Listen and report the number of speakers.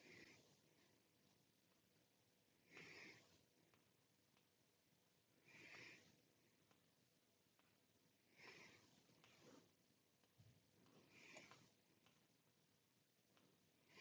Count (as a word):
zero